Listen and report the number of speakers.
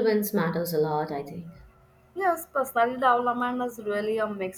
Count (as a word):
two